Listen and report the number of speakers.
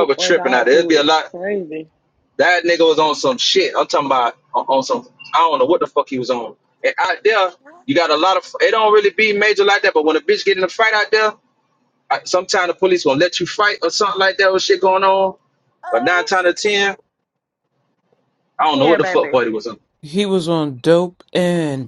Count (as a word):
three